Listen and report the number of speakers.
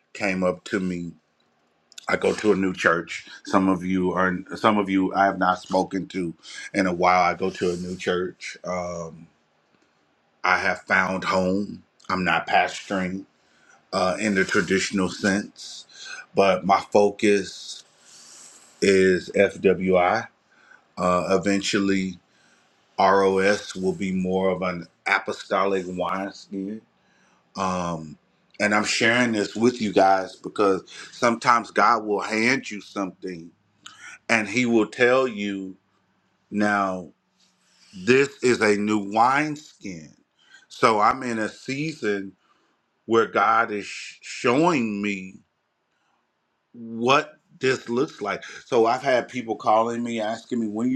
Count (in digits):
1